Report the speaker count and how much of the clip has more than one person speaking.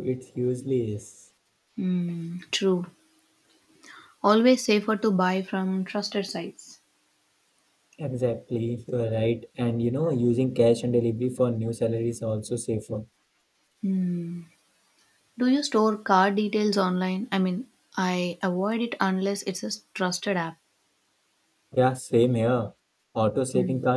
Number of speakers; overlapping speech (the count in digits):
2, about 1%